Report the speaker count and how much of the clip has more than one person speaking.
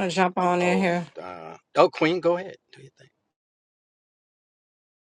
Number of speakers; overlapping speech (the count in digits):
2, about 9%